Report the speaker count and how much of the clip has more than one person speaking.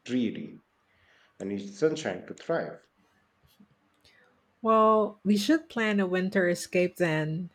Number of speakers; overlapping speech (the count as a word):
two, no overlap